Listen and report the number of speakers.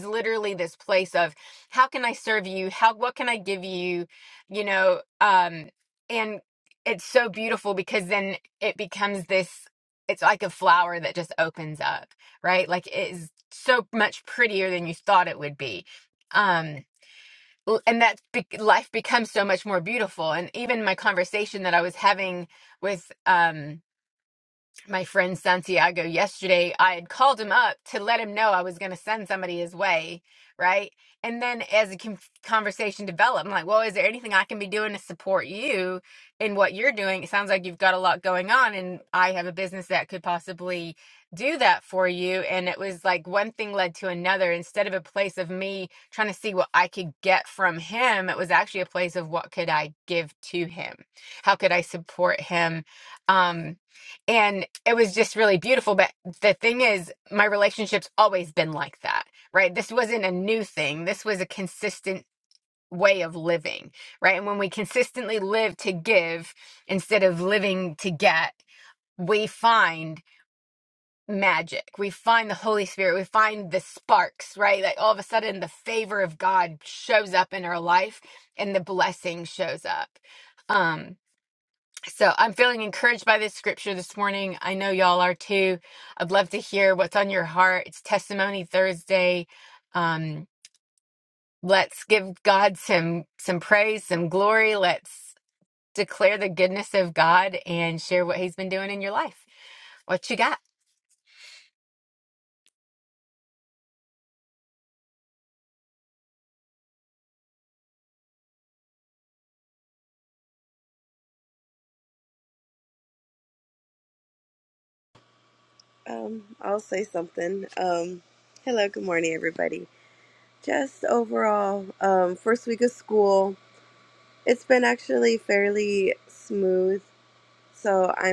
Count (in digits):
2